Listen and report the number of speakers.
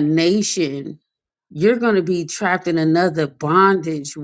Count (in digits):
1